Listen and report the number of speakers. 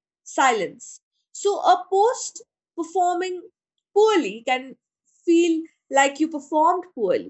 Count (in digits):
1